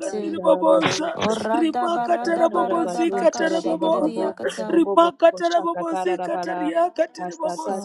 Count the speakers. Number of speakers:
3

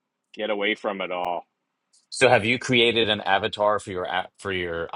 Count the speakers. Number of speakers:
2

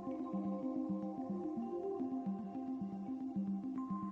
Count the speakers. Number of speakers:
0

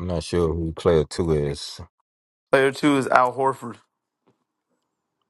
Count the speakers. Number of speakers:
2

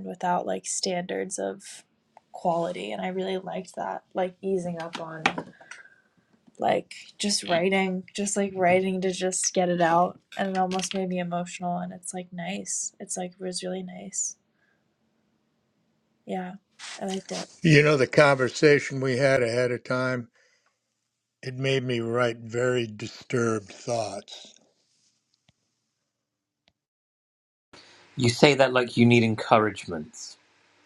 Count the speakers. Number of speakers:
3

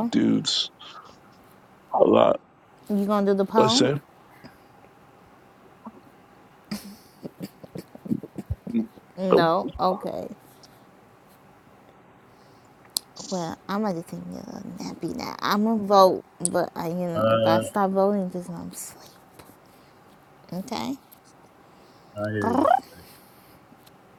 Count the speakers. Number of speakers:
3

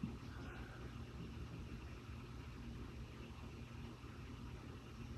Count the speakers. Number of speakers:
0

